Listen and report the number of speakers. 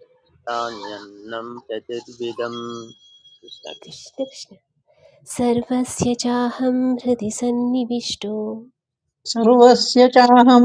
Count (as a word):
three